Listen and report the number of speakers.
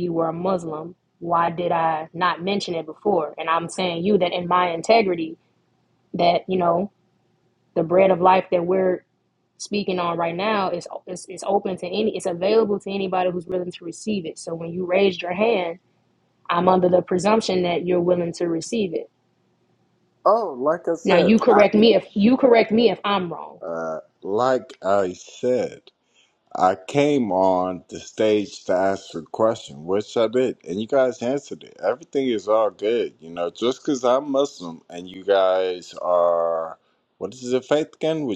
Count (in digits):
2